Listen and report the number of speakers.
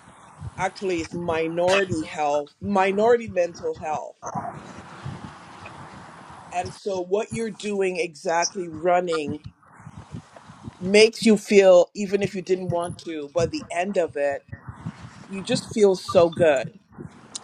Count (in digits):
1